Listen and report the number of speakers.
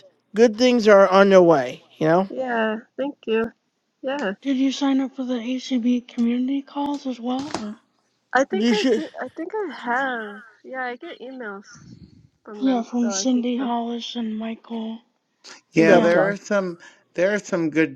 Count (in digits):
4